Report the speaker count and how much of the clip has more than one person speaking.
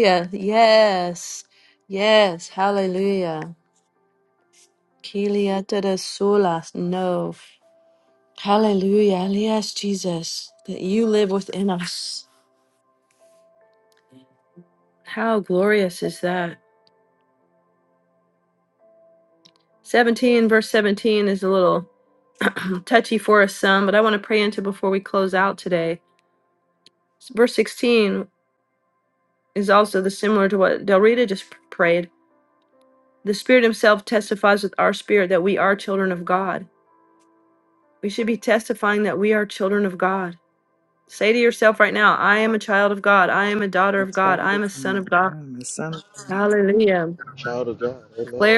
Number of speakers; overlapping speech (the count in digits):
3, about 3%